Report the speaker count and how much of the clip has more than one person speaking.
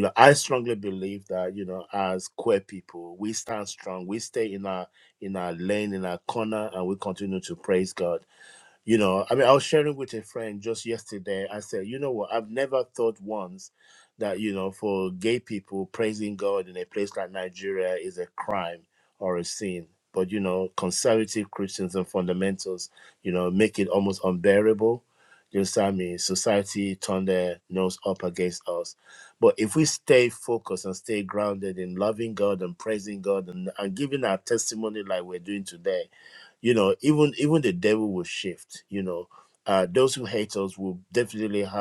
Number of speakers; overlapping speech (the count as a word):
one, no overlap